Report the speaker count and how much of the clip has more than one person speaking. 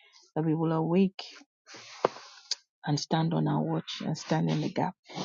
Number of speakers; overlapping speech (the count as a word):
one, no overlap